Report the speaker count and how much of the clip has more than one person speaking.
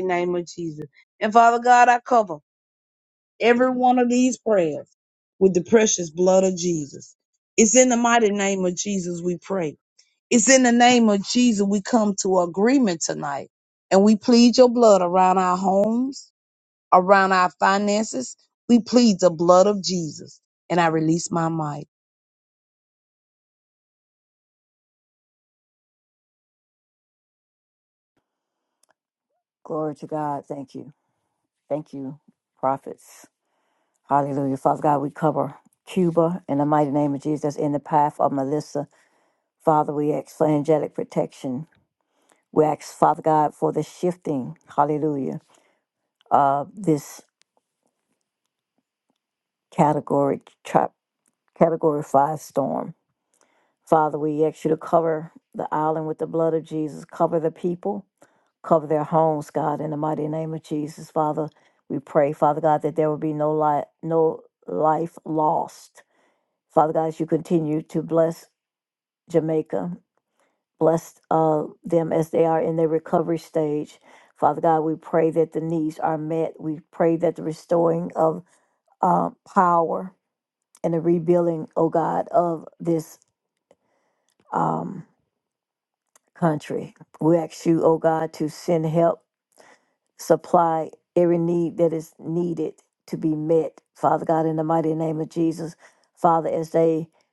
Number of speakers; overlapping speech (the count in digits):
2, no overlap